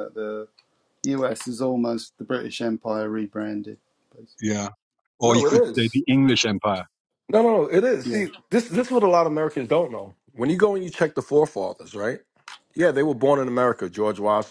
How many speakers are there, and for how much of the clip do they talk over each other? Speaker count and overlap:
3, about 5%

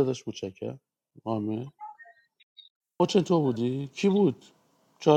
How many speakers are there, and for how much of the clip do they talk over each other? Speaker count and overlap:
1, no overlap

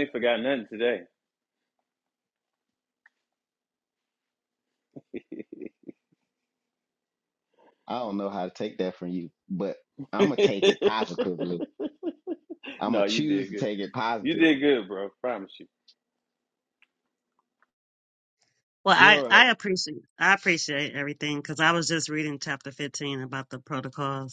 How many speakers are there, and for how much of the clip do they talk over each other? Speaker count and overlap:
3, about 6%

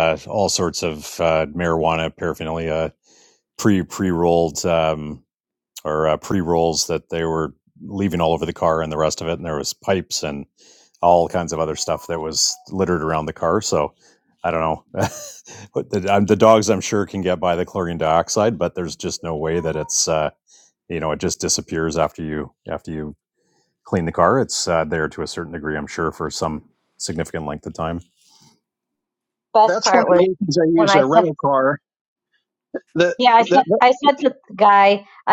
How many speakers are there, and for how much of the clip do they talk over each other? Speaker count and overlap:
3, about 4%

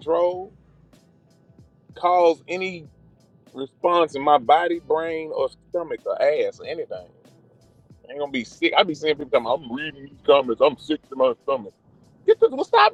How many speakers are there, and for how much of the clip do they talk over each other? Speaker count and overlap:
1, no overlap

